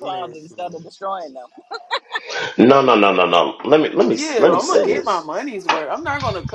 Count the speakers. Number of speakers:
3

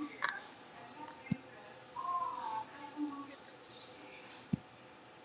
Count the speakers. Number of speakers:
0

